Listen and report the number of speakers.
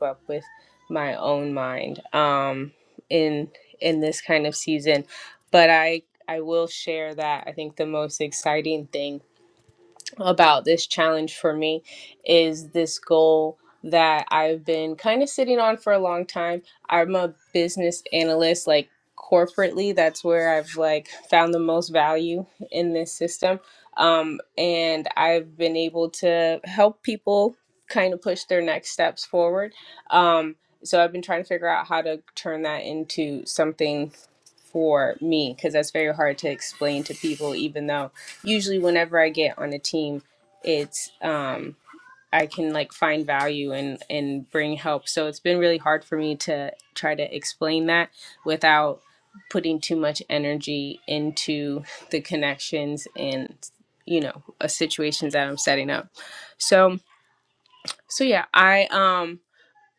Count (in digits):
1